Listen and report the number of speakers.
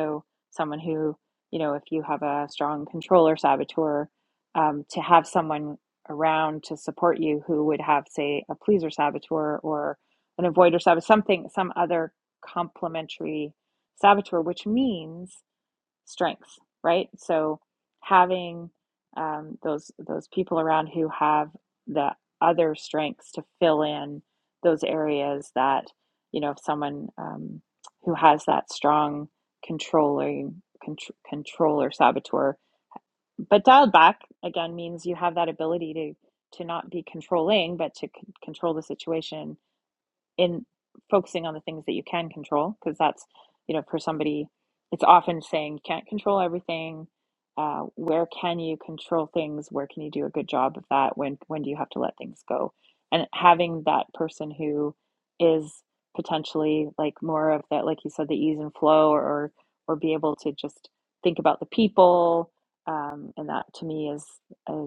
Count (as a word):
one